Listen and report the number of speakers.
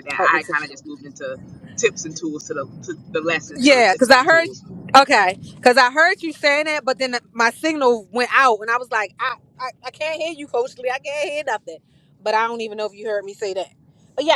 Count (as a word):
two